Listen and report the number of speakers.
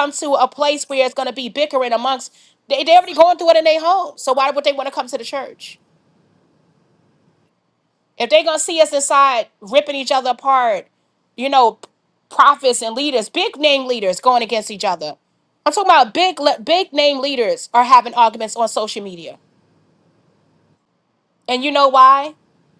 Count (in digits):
1